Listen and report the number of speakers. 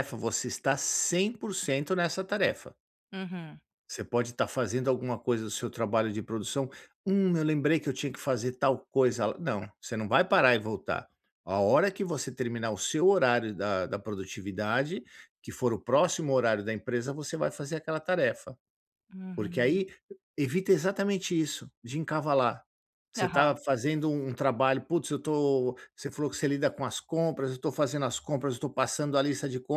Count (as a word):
two